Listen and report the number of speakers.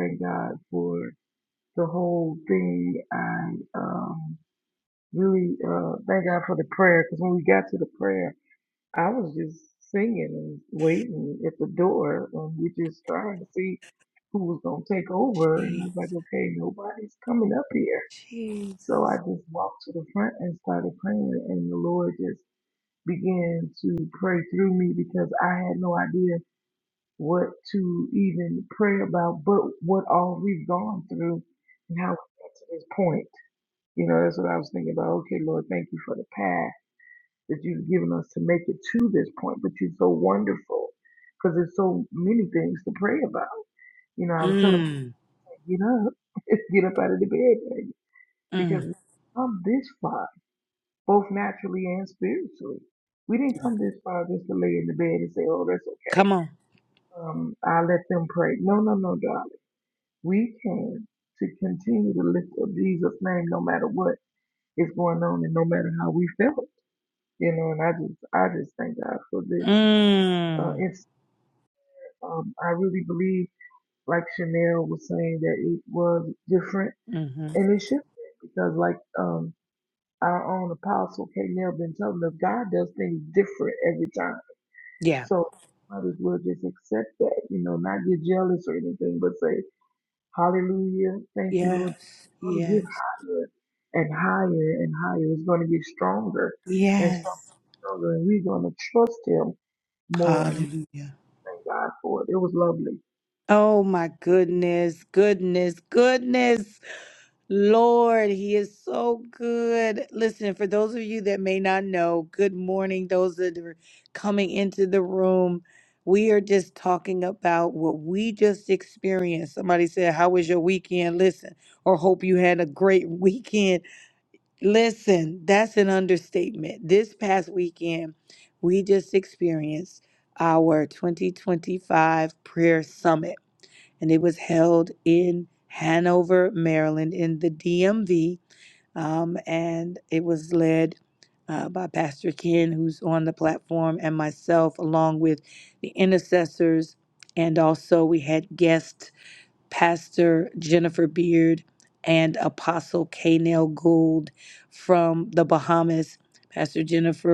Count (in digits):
2